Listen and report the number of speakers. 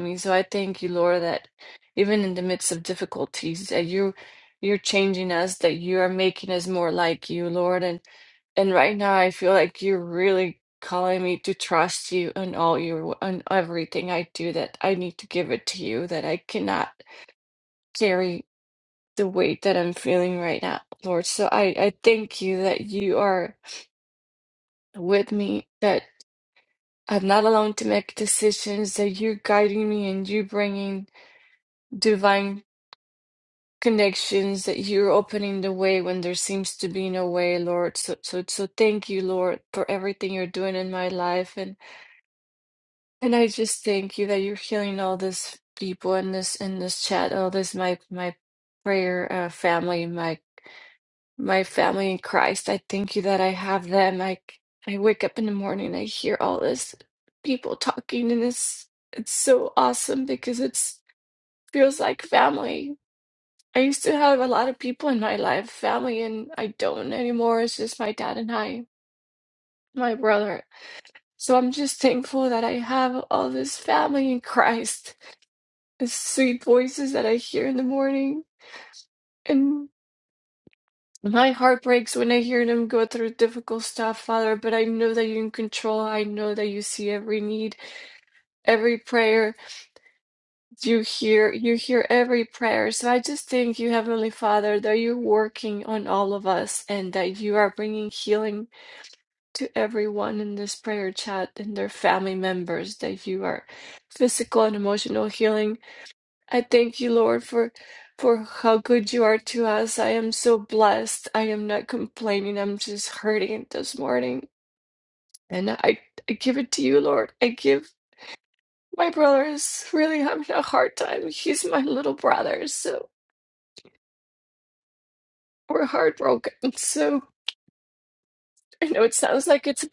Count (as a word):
one